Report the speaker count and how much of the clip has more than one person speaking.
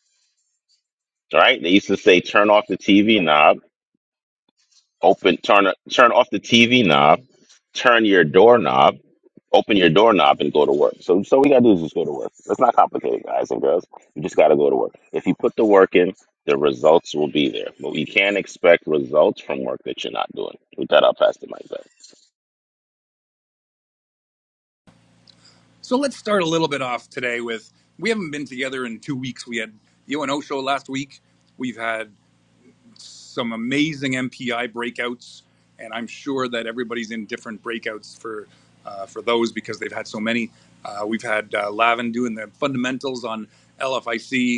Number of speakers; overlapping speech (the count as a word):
two, no overlap